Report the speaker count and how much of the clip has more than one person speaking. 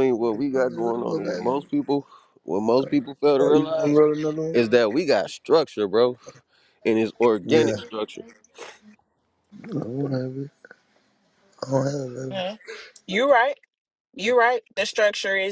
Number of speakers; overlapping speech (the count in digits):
3, about 15%